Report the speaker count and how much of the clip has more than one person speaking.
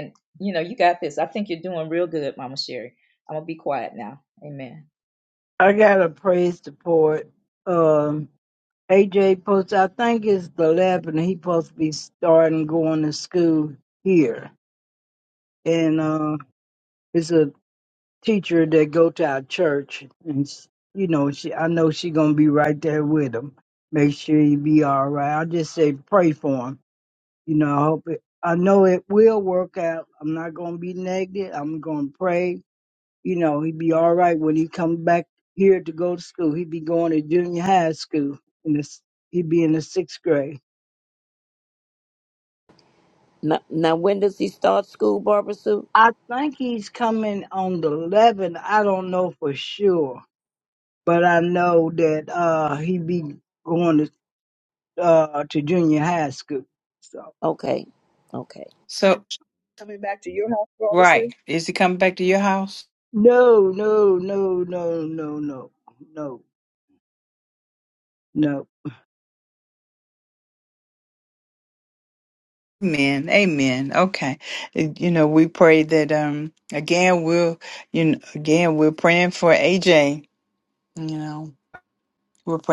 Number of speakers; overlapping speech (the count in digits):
5, under 1%